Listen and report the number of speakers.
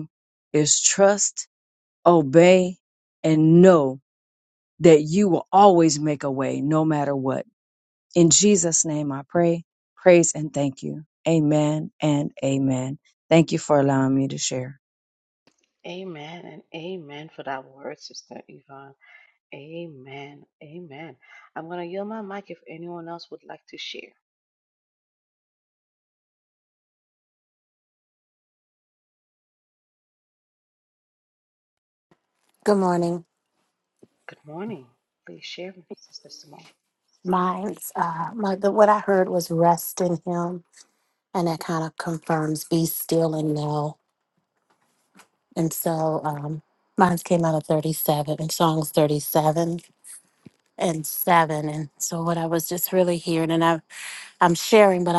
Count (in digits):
3